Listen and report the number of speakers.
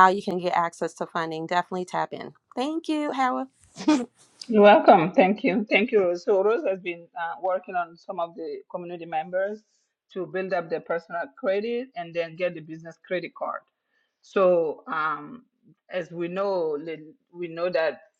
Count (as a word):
two